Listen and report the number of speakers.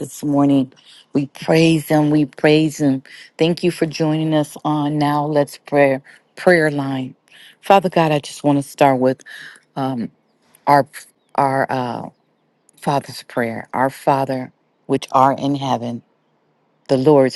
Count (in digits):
1